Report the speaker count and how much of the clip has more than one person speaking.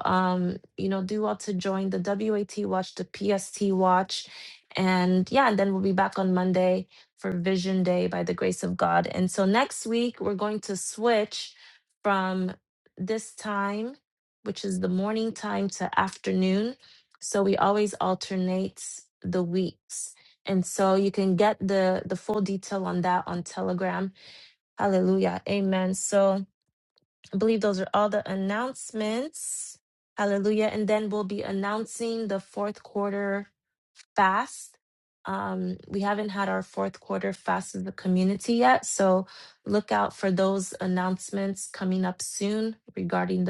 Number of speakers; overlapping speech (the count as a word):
one, no overlap